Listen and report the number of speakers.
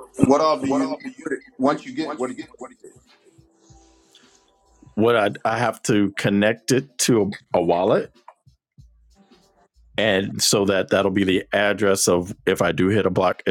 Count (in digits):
2